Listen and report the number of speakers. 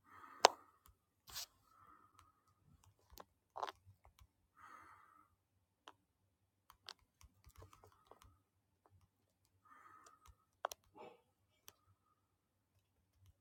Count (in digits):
0